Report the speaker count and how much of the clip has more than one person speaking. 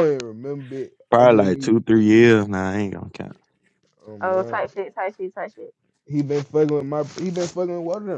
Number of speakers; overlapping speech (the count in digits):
3, about 13%